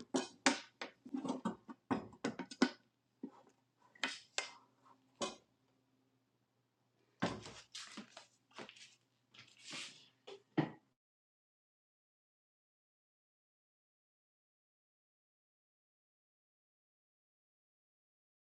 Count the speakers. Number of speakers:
0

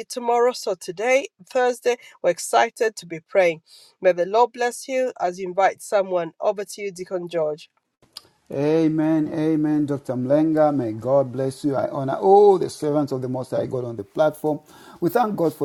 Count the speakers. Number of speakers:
2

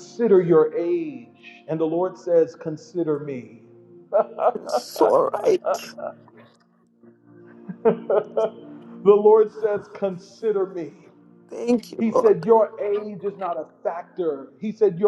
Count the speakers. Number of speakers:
2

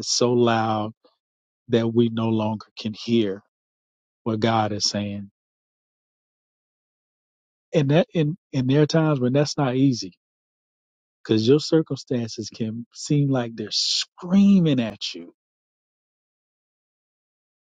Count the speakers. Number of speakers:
1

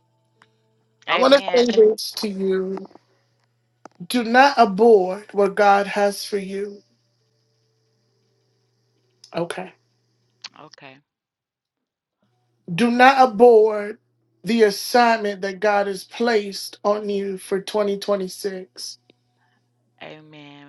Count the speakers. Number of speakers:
2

